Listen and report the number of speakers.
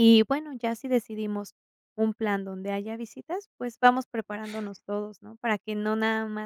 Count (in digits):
1